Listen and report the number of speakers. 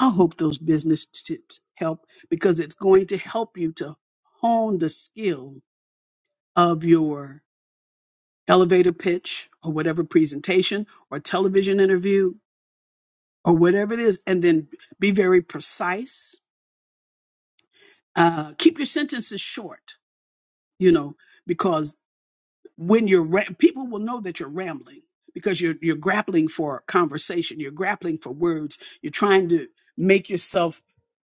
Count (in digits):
1